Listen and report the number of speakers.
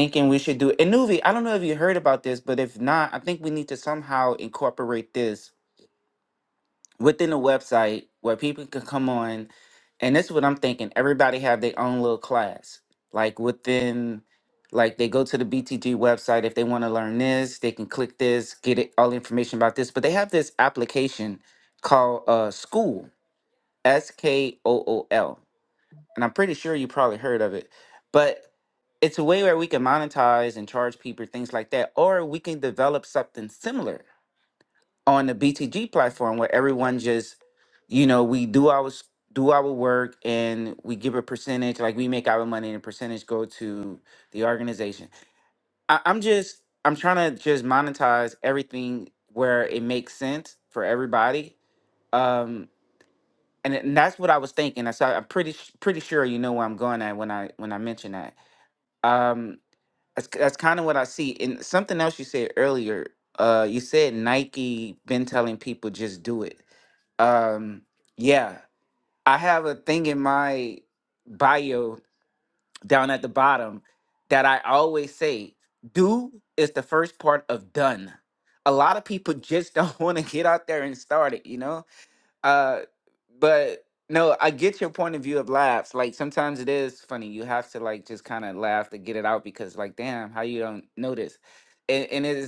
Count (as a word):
one